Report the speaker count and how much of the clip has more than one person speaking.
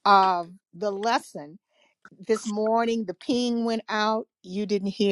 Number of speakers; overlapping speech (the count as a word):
one, no overlap